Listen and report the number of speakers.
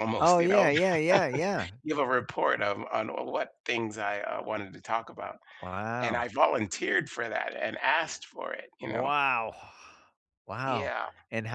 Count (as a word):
two